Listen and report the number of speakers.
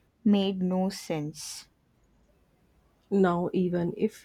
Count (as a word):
two